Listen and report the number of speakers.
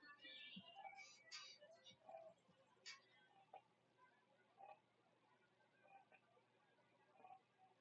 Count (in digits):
0